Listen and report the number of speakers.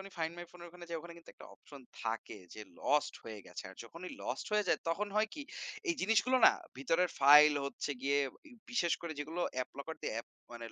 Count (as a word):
one